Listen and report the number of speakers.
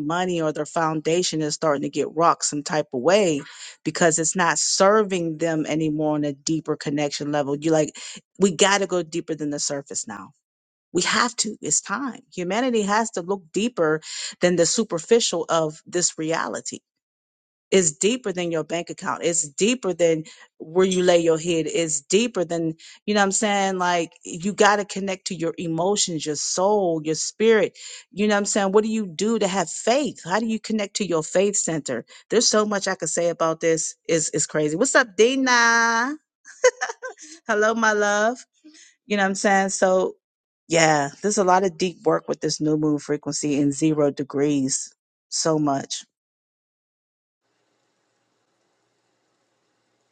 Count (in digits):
1